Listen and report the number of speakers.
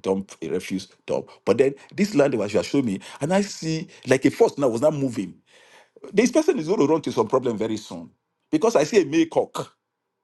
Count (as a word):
one